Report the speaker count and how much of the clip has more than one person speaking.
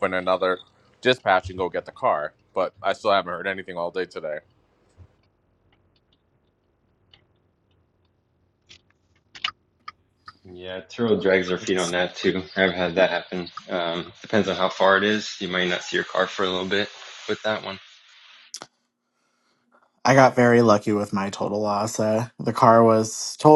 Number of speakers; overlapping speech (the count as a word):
three, no overlap